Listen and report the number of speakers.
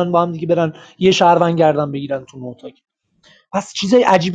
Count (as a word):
one